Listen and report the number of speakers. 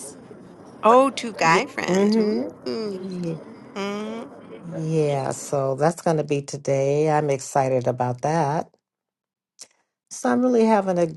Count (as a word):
two